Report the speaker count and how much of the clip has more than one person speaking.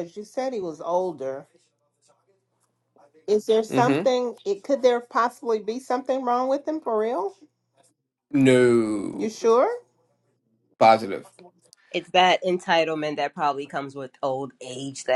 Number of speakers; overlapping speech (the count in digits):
3, about 3%